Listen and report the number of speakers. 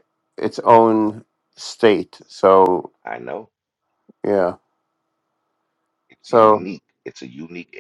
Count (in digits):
2